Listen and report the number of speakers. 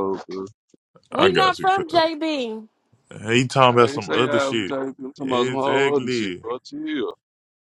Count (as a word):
three